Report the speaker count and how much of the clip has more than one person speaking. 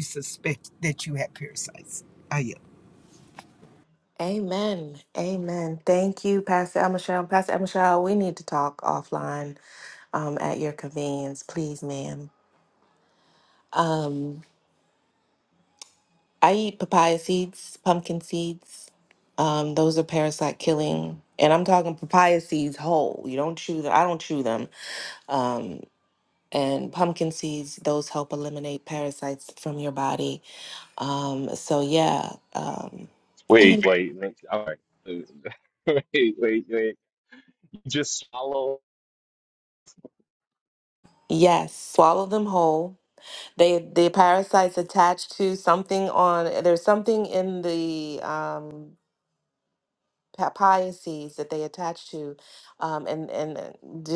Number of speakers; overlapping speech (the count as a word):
three, about 1%